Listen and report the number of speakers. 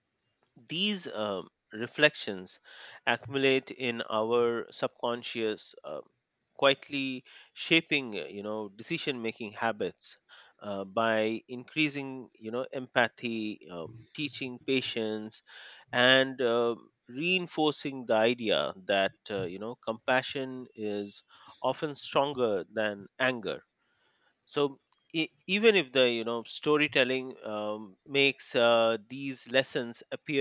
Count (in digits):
1